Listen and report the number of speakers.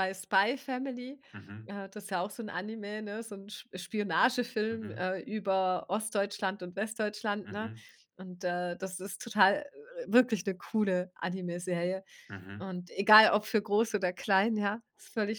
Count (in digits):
2